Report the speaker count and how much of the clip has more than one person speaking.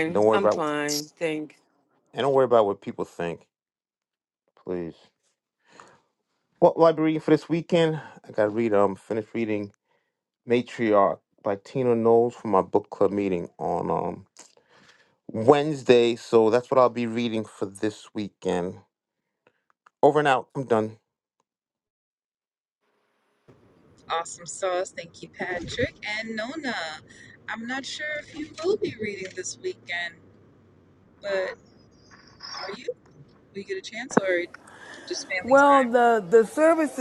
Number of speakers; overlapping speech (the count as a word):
four, about 3%